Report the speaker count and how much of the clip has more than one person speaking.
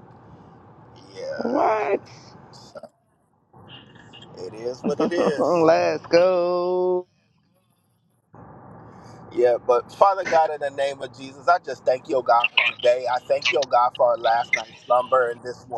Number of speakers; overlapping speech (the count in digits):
2, about 2%